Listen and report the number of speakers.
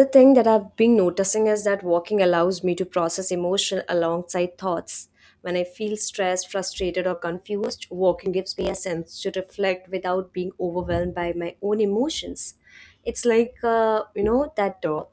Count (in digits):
1